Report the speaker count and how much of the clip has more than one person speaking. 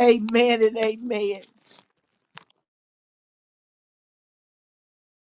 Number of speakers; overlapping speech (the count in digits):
1, no overlap